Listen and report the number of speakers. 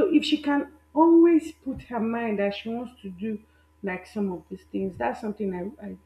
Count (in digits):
1